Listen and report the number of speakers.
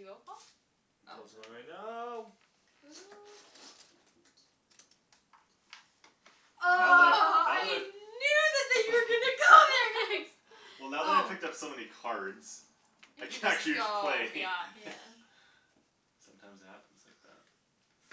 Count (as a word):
four